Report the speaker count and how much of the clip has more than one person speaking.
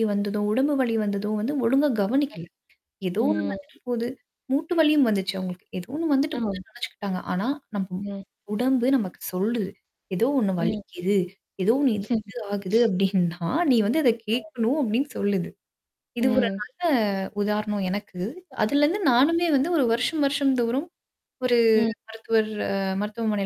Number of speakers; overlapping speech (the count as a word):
two, about 5%